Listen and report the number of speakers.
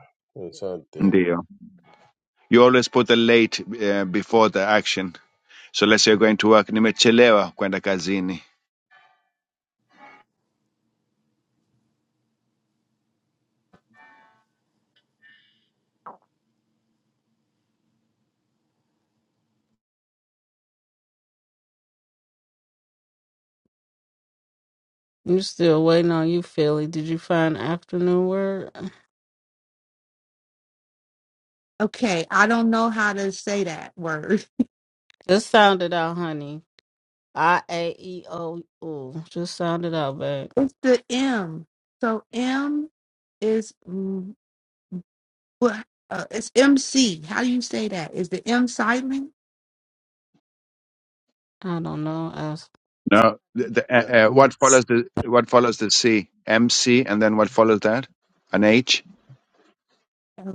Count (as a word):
four